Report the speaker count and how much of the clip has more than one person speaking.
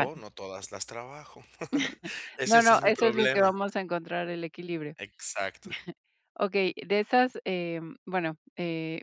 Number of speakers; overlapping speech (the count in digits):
2, about 13%